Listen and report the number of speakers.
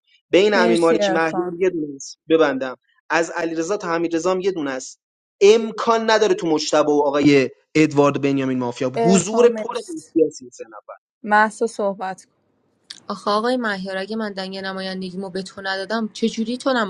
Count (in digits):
3